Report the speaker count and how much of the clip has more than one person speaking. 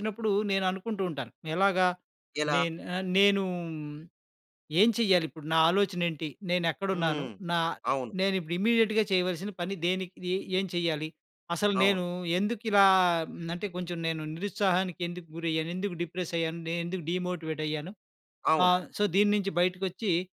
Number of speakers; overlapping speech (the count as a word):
two, about 5%